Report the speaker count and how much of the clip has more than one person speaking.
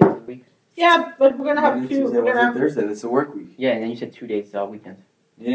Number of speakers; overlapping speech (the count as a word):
three, about 19%